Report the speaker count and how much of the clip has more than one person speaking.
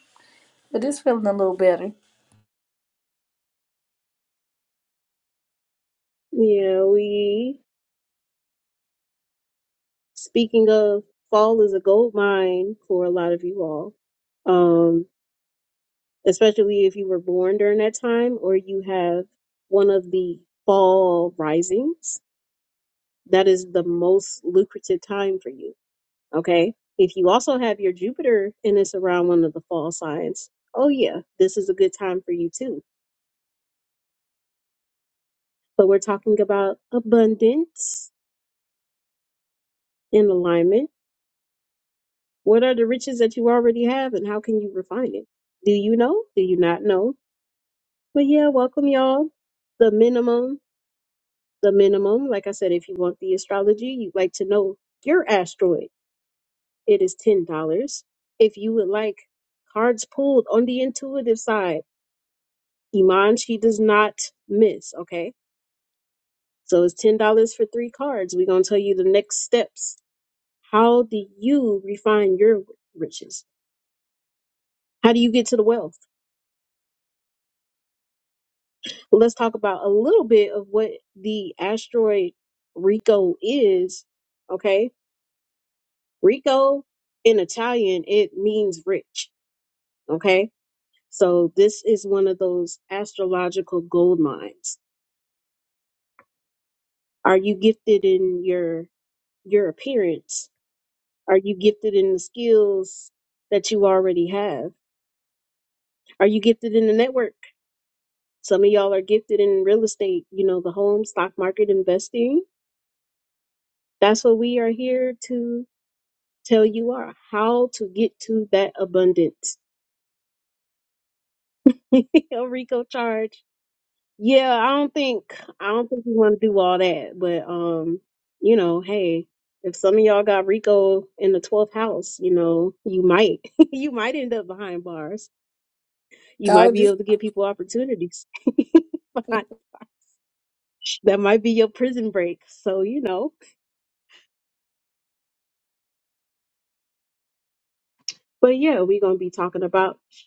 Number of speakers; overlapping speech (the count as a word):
two, under 1%